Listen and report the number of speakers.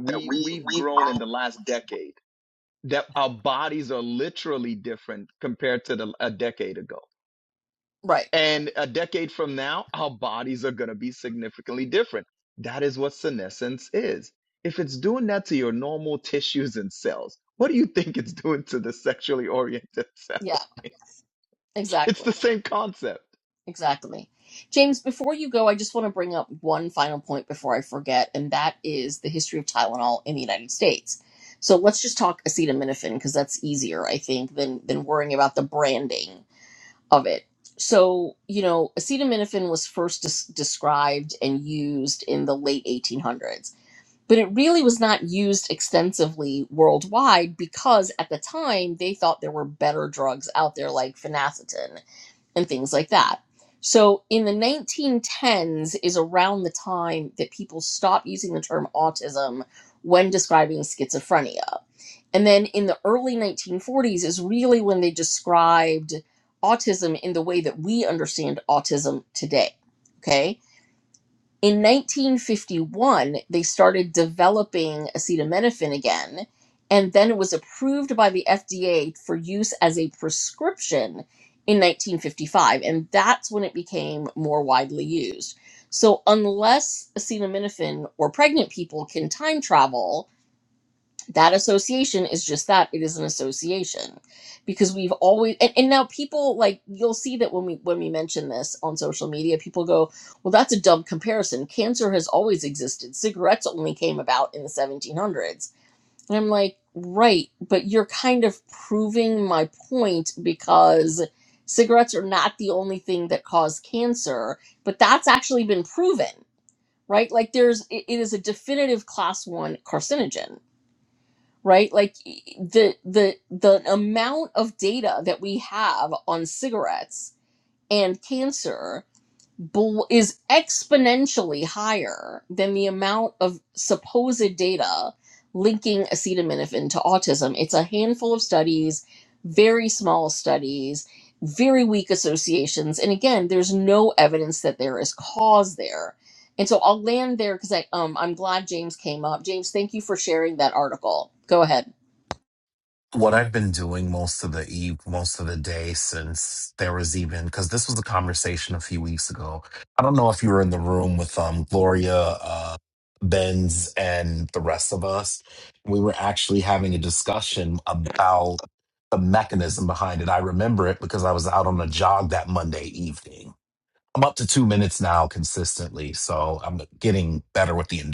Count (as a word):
three